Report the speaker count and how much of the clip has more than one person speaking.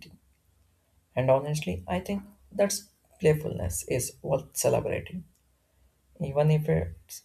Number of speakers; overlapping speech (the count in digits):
1, no overlap